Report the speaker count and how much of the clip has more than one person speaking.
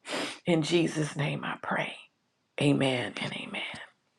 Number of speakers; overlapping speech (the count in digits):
1, no overlap